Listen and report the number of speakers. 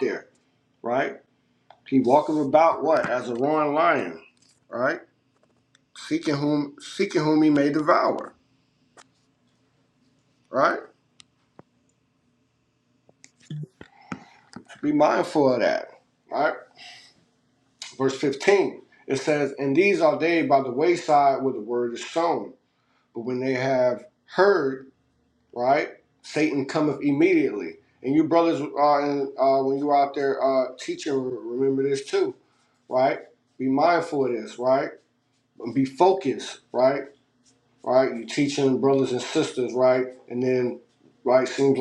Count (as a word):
one